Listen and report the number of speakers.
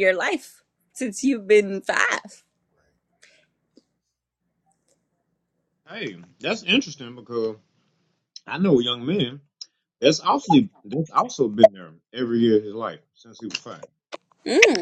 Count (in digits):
2